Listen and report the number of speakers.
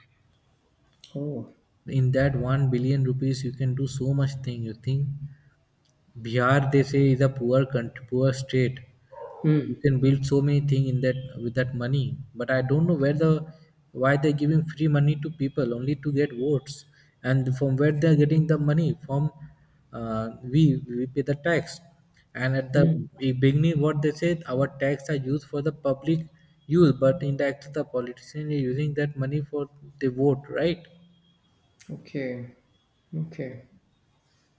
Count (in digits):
2